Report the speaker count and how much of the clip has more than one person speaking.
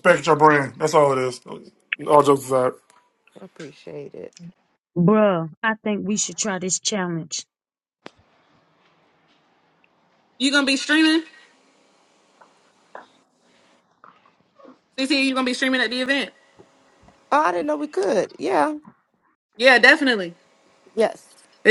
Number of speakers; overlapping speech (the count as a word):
four, no overlap